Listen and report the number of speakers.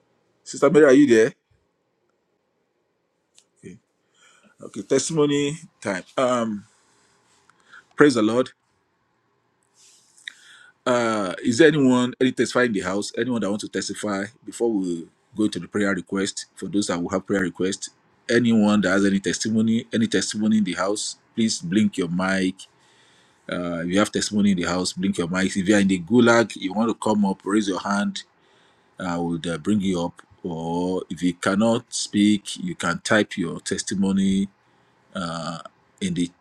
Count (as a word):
one